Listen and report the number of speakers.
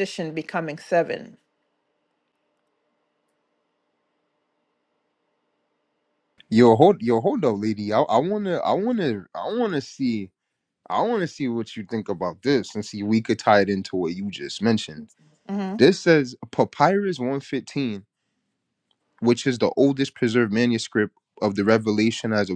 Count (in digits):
2